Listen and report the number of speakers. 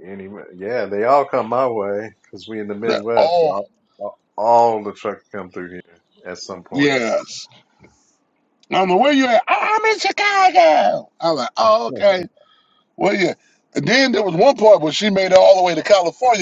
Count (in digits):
2